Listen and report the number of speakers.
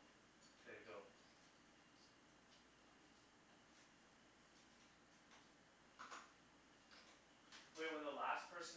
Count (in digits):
1